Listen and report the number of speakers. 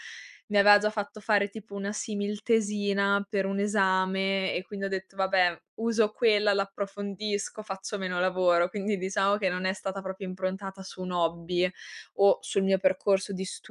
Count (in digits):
1